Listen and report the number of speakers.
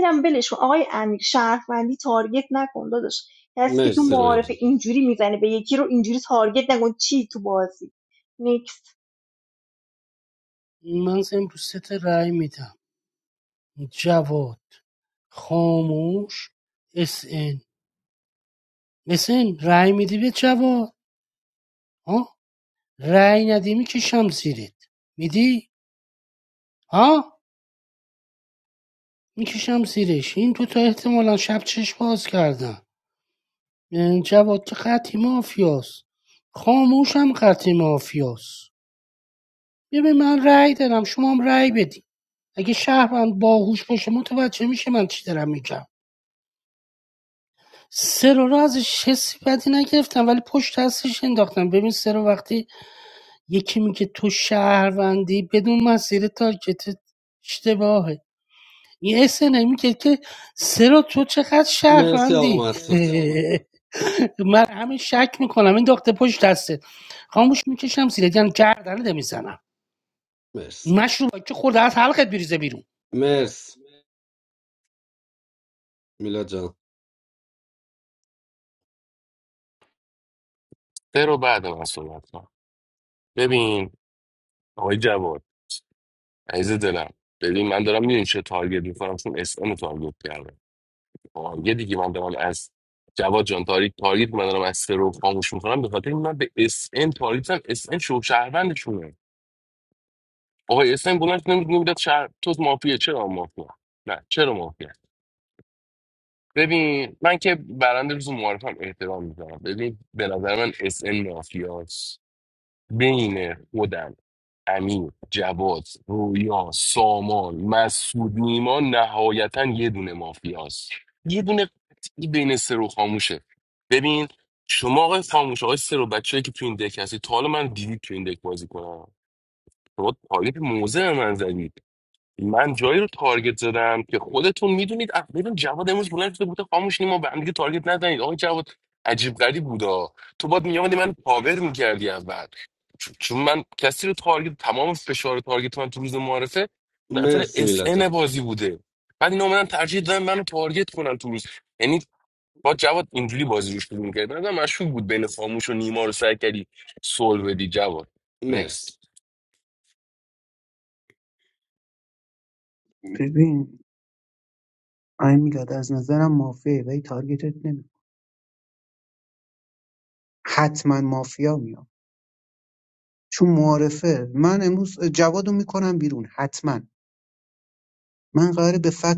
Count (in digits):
5